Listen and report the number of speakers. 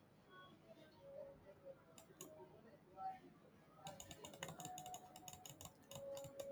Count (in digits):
0